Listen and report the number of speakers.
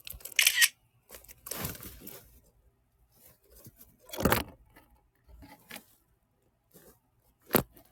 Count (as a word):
zero